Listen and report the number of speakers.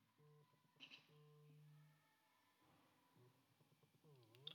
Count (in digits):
0